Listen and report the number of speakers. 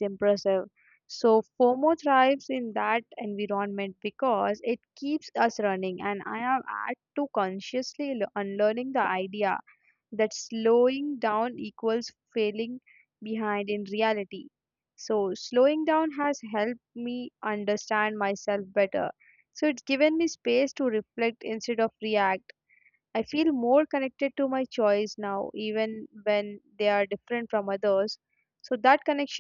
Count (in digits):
1